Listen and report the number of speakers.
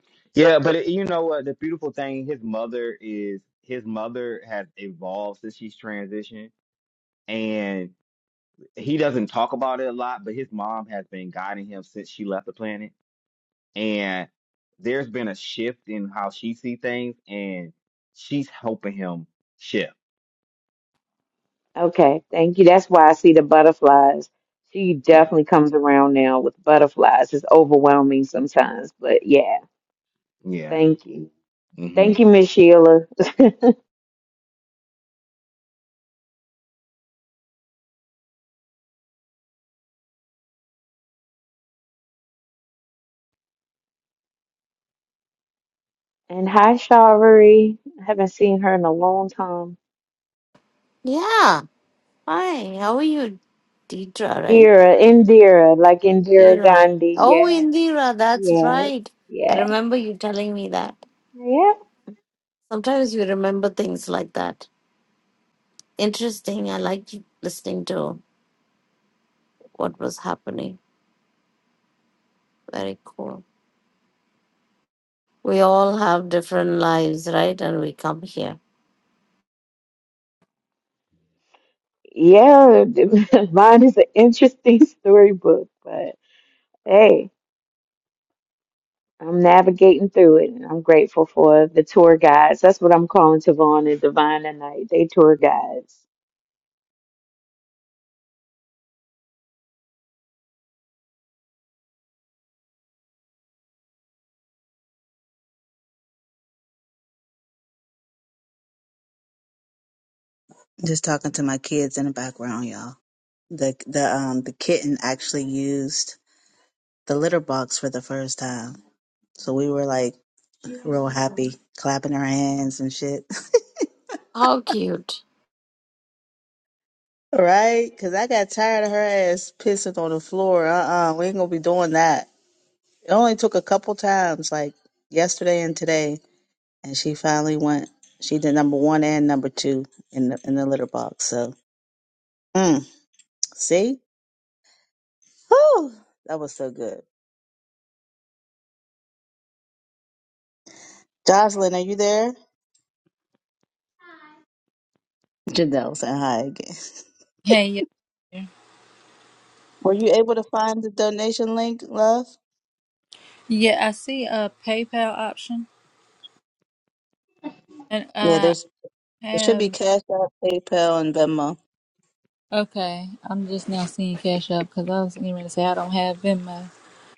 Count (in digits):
5